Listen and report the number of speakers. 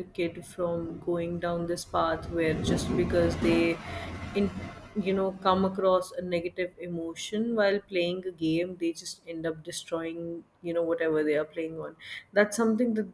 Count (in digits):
1